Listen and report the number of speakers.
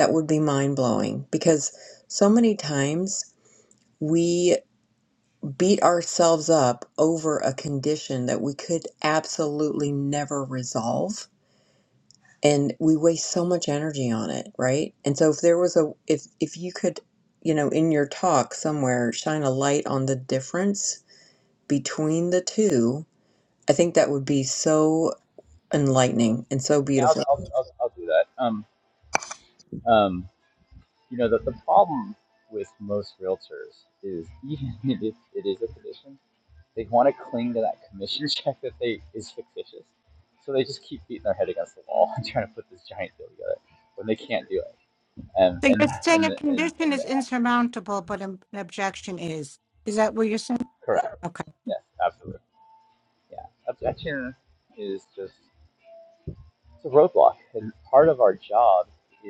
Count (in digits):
3